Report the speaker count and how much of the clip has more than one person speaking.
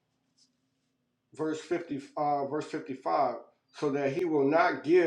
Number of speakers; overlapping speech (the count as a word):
one, no overlap